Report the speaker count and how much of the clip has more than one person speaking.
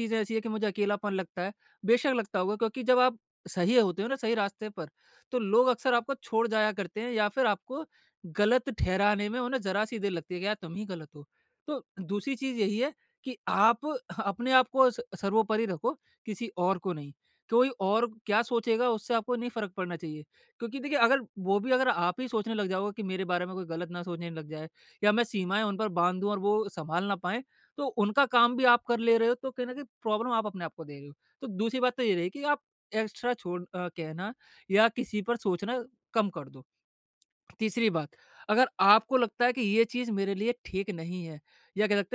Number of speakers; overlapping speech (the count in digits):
1, no overlap